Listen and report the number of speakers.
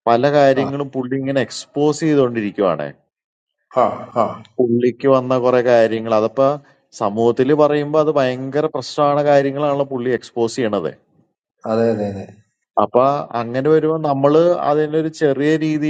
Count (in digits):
2